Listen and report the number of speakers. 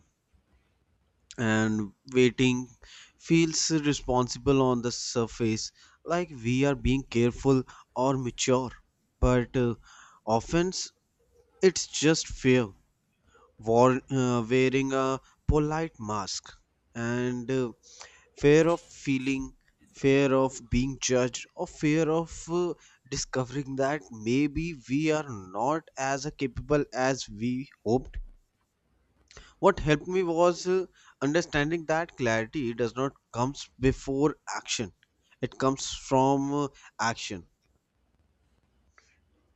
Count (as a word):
one